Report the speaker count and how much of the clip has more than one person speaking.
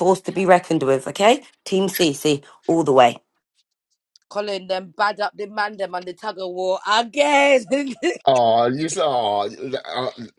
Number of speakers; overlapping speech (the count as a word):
three, no overlap